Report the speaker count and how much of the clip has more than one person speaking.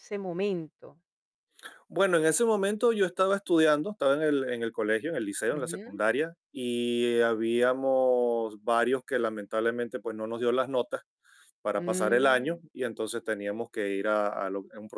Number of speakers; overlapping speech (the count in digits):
2, about 7%